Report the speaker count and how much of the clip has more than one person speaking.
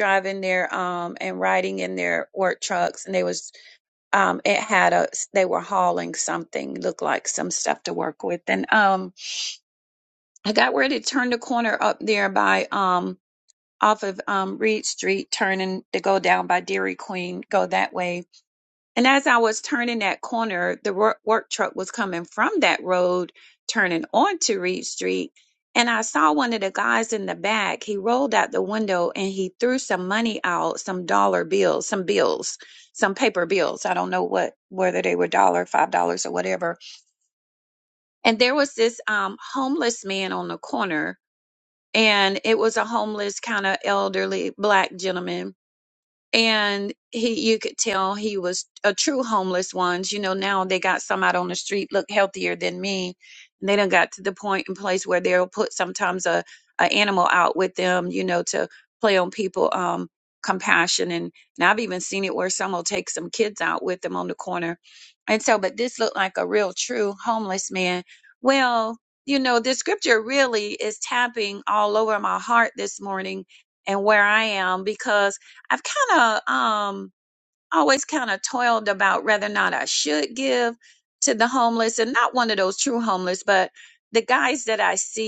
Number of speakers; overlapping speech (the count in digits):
1, no overlap